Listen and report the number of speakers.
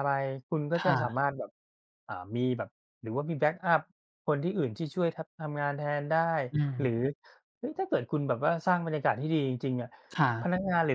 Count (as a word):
two